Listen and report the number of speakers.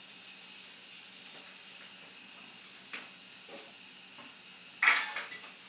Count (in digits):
0